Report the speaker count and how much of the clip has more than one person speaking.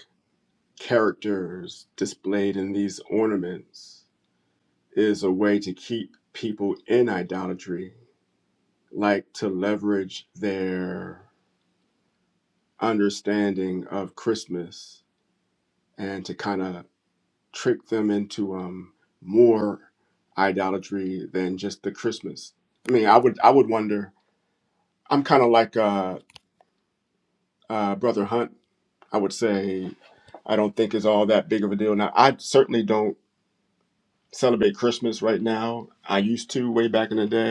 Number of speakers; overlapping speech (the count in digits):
1, no overlap